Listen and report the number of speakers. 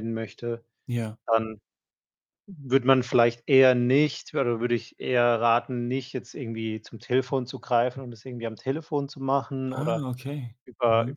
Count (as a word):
two